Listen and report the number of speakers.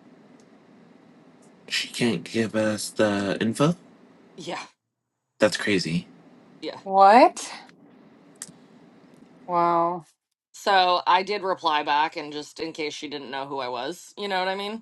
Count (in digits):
3